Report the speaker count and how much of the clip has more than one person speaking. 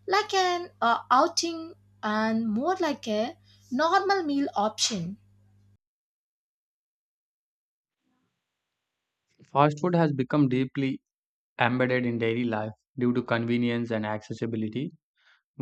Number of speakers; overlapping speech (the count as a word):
two, no overlap